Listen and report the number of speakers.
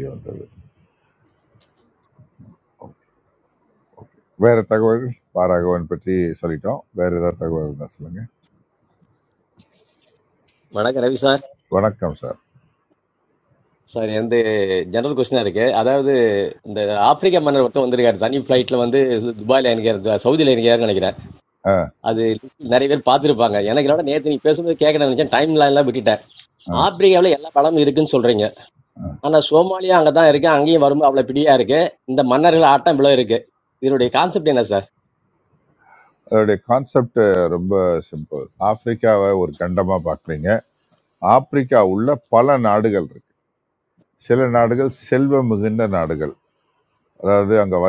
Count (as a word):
two